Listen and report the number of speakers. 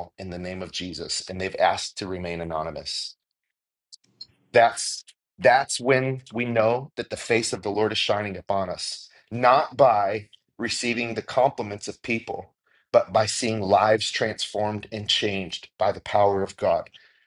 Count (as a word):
one